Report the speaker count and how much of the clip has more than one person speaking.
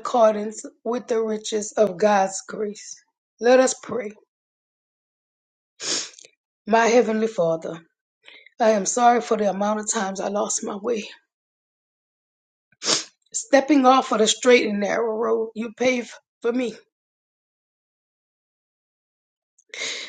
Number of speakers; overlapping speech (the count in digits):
1, no overlap